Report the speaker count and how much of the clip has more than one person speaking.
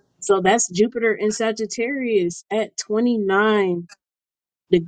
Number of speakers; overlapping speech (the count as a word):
one, no overlap